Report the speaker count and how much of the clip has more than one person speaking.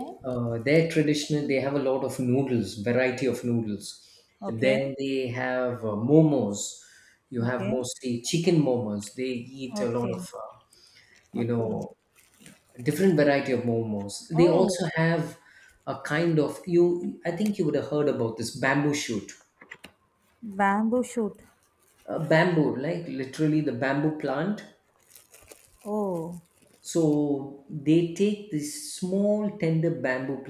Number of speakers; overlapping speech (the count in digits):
2, about 7%